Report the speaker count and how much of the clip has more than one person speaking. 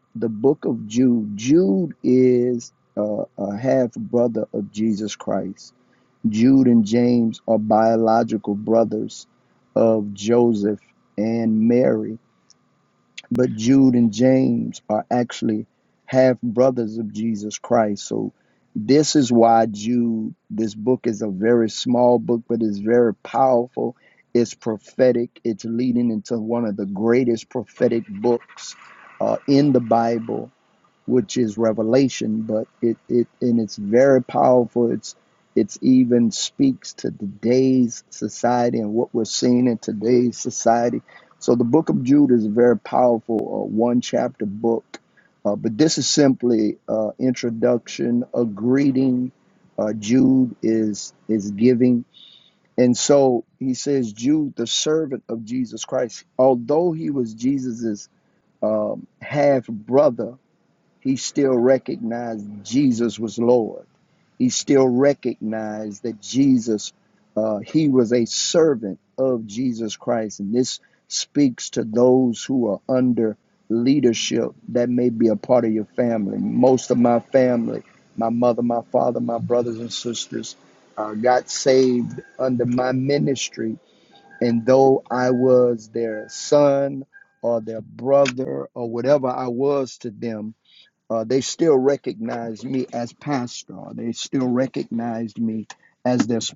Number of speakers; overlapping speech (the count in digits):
1, no overlap